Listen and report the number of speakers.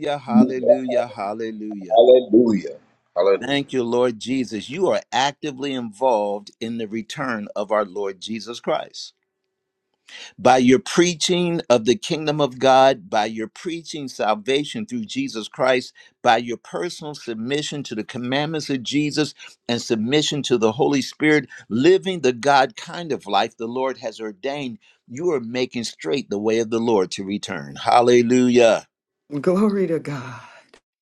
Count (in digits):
3